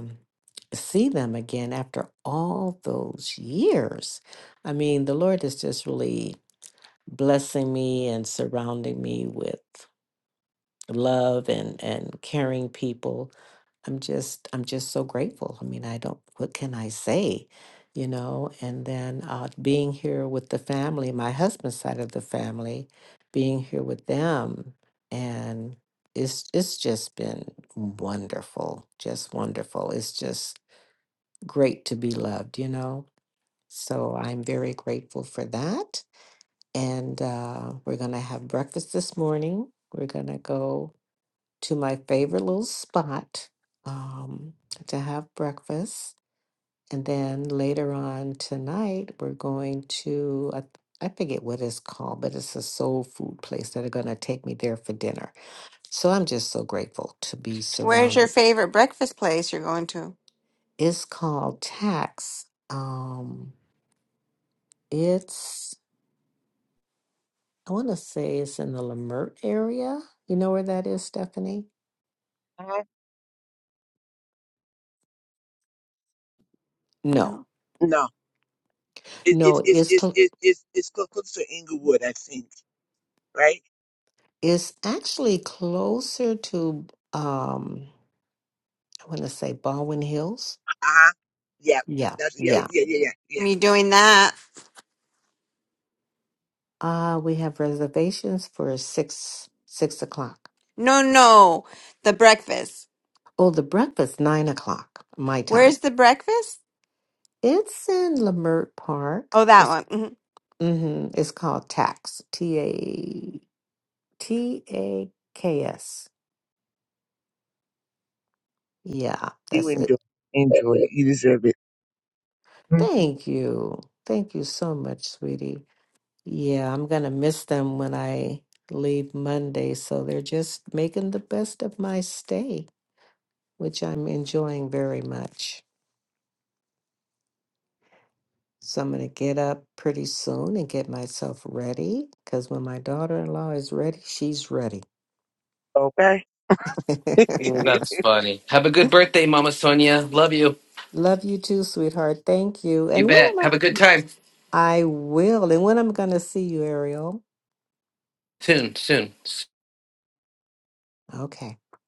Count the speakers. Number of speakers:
four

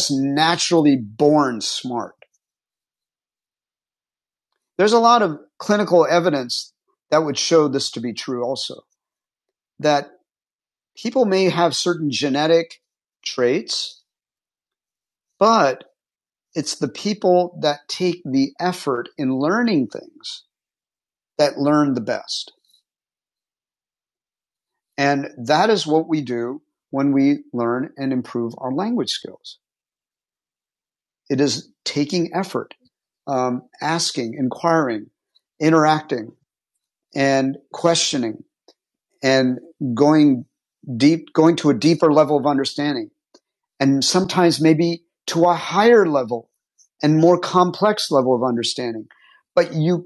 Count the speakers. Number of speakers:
one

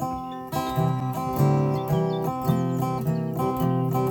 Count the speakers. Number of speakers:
zero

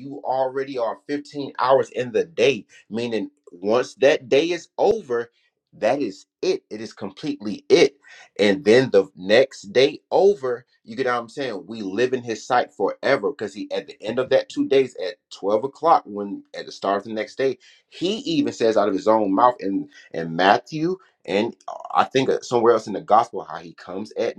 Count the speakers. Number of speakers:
one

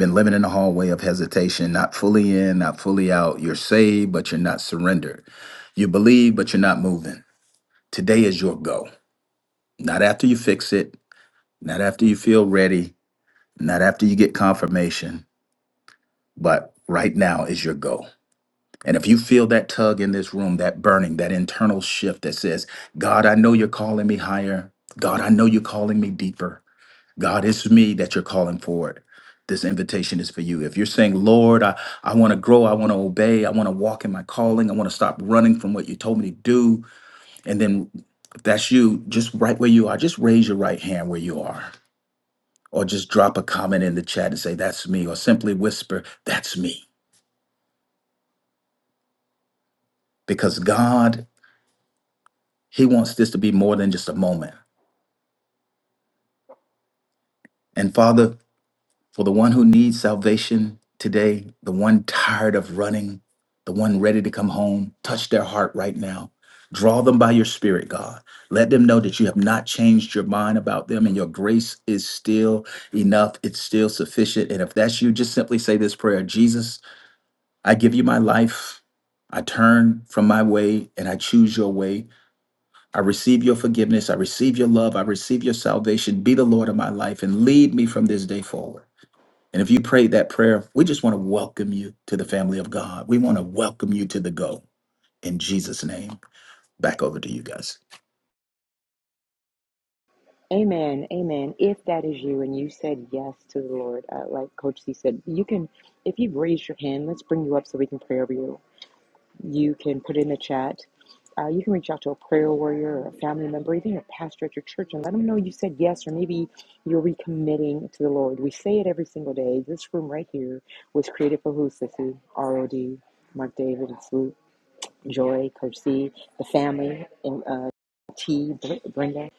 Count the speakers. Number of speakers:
two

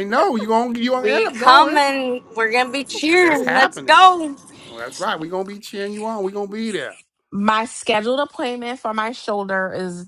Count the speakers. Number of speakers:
three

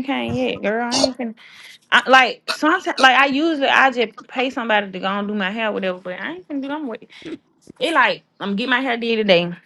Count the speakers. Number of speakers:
one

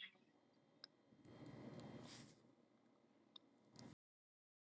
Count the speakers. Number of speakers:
zero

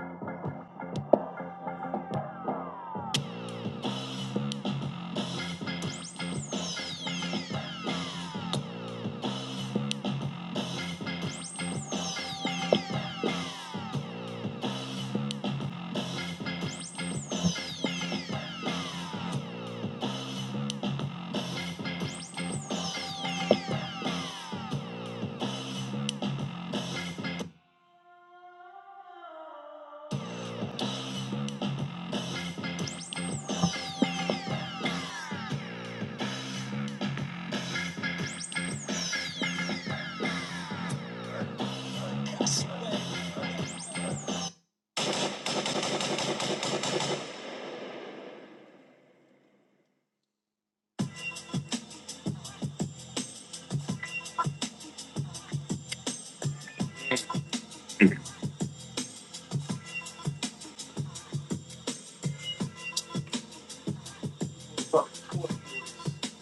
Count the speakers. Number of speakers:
zero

